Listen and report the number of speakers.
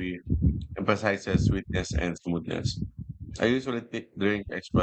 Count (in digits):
1